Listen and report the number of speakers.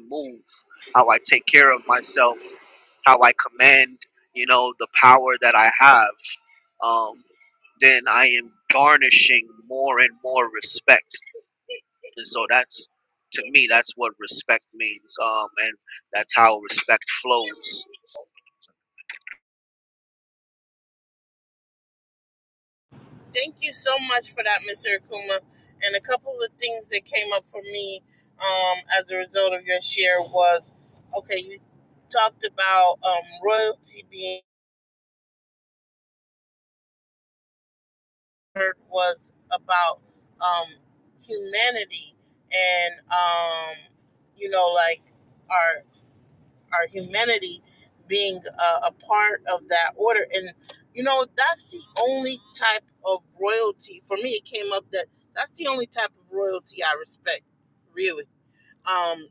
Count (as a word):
two